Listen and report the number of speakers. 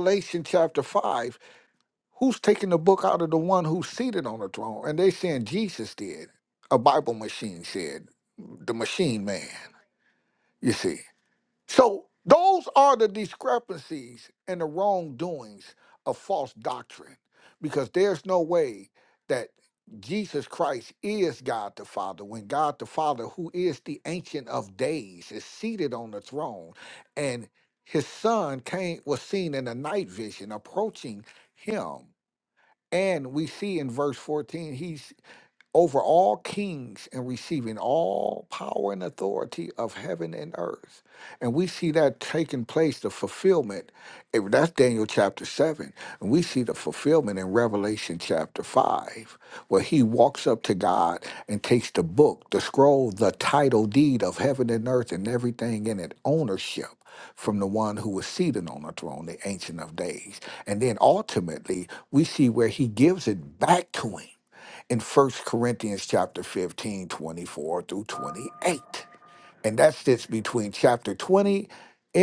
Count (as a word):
one